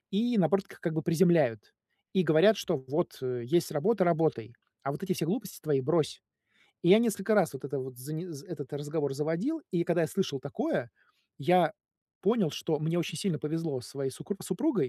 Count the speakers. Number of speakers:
1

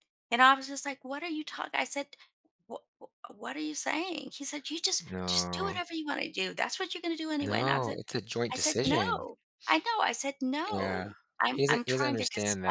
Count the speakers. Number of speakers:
2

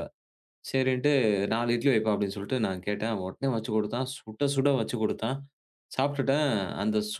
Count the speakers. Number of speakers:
1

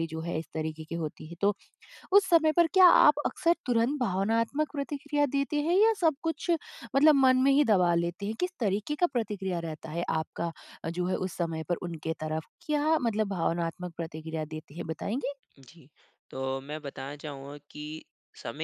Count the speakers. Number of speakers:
2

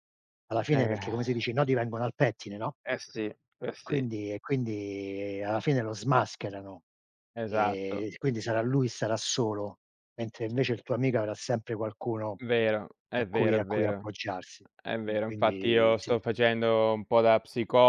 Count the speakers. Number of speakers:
2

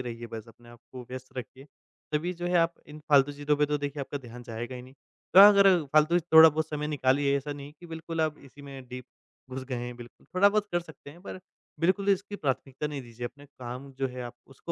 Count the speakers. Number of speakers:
1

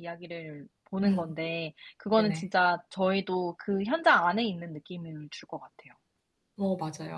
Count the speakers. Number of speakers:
2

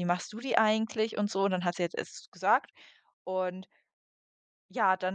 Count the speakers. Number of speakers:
1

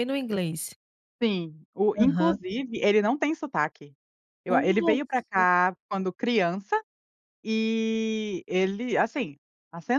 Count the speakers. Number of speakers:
2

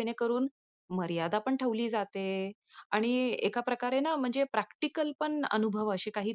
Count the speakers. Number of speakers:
1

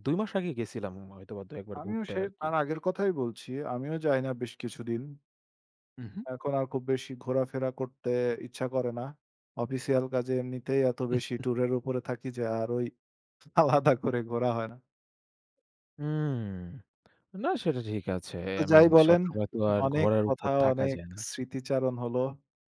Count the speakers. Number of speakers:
2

